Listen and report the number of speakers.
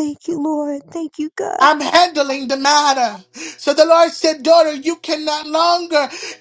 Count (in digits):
2